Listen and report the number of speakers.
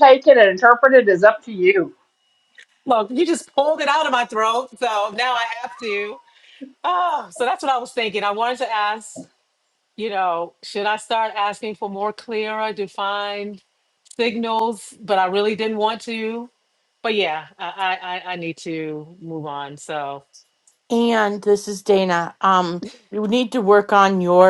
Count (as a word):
three